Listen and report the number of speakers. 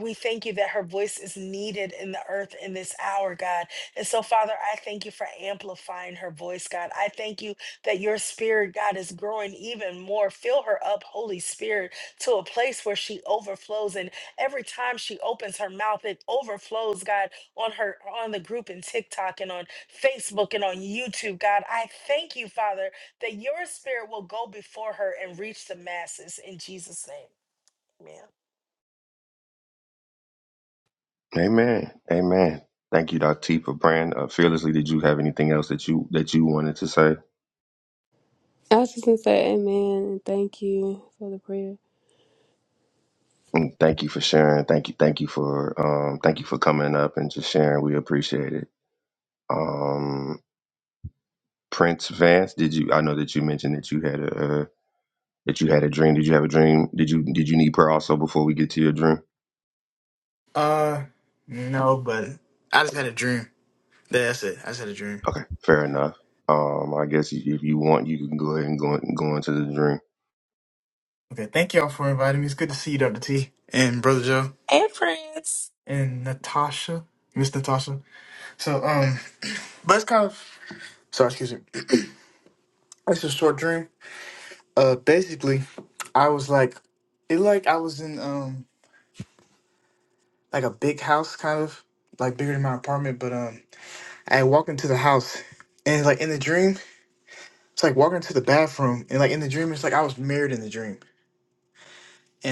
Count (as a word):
four